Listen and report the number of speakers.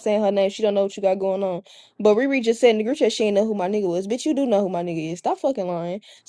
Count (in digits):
1